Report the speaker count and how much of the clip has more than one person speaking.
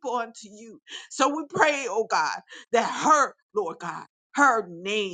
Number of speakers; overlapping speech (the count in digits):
1, no overlap